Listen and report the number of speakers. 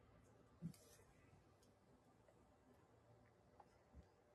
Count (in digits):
0